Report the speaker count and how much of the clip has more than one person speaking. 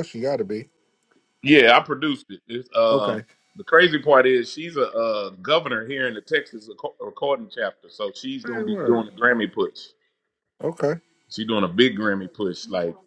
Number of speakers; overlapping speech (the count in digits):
2, about 7%